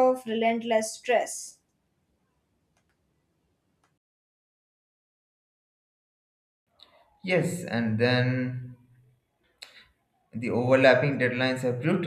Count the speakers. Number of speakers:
two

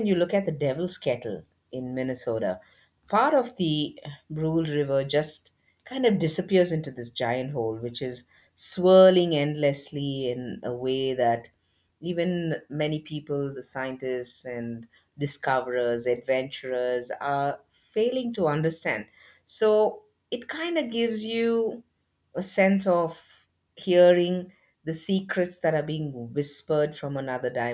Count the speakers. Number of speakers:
one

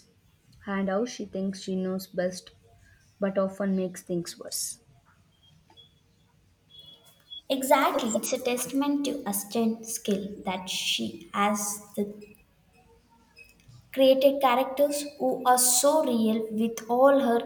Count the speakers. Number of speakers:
two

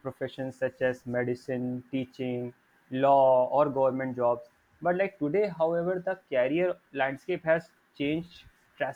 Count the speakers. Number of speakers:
one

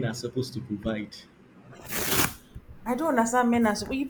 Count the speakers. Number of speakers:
two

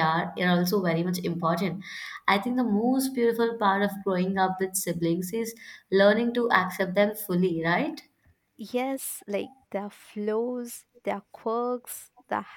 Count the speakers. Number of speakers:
two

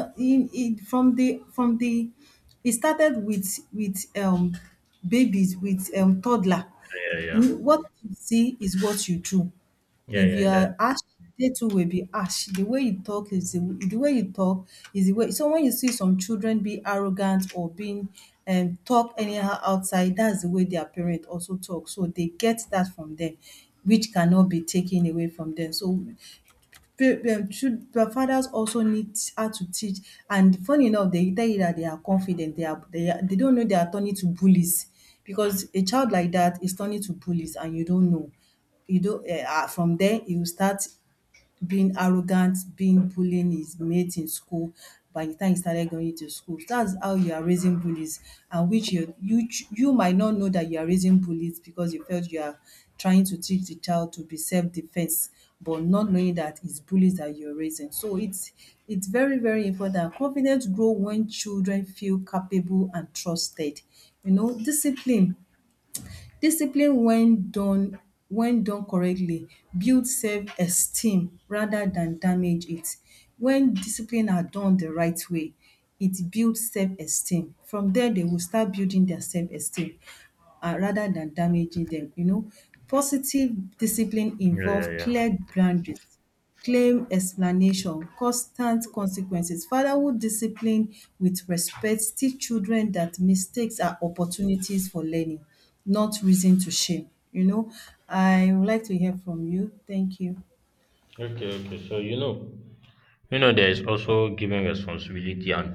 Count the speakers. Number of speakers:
two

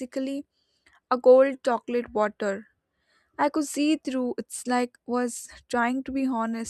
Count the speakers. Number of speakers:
one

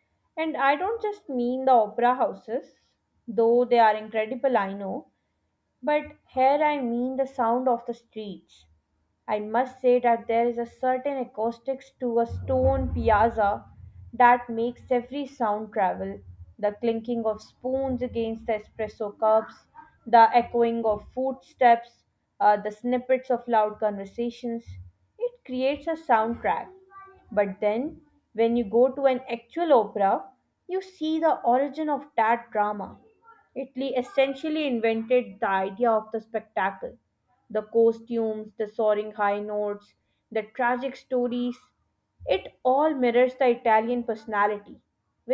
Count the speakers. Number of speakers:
one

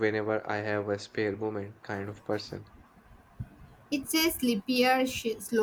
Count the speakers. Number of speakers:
two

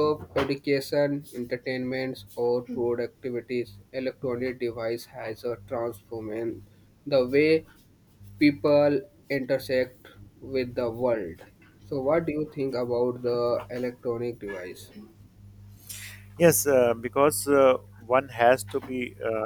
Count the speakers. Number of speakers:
two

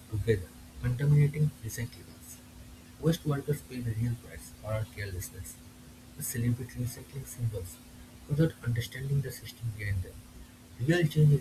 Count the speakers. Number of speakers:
one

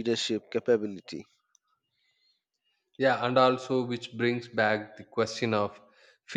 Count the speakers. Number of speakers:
two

